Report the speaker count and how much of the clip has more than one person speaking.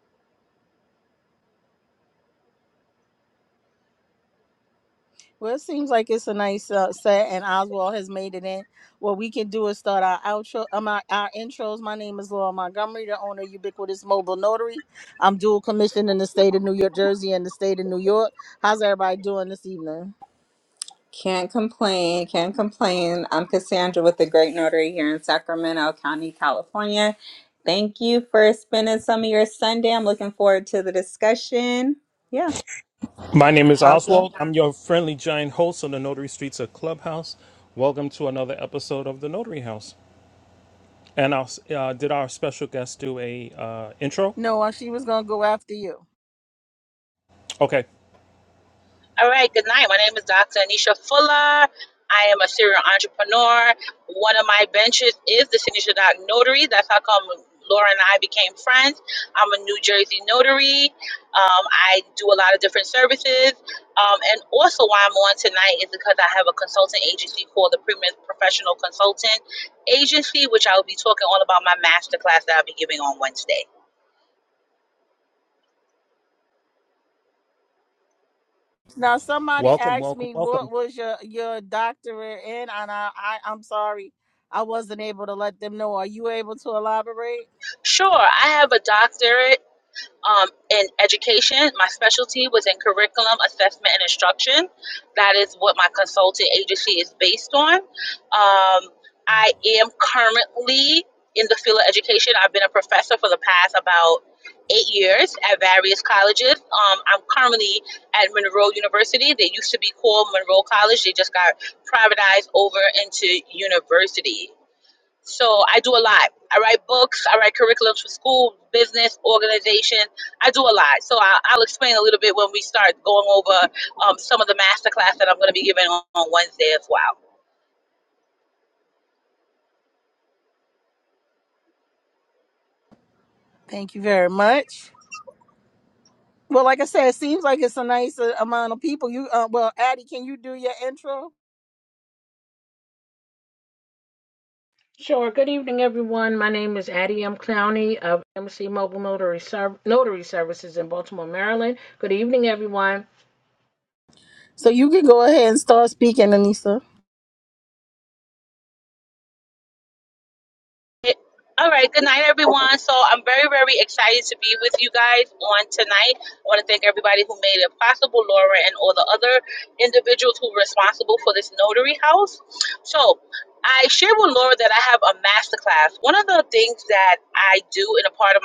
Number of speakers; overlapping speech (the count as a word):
five, about 1%